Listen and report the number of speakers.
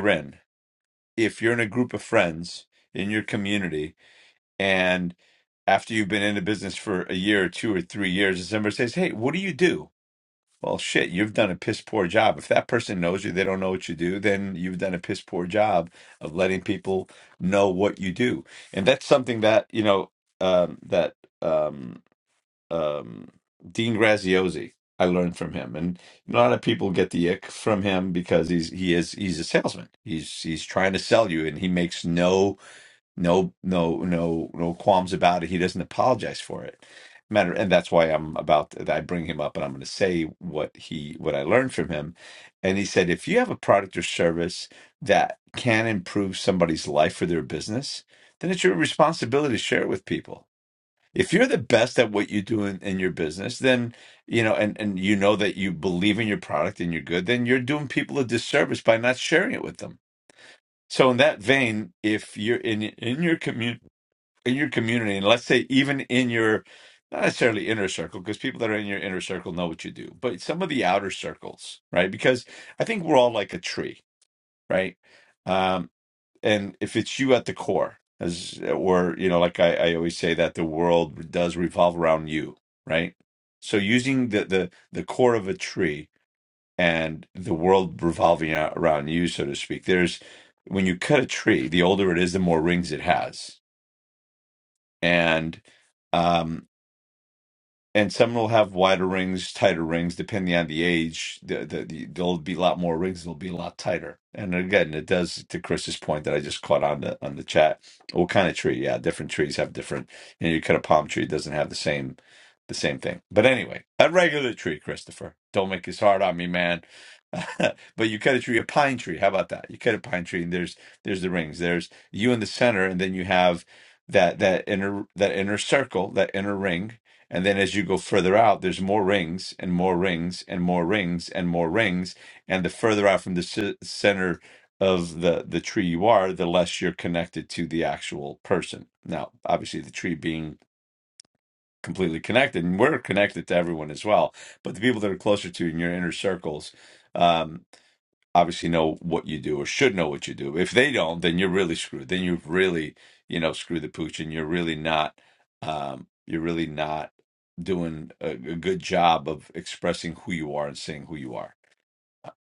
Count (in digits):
1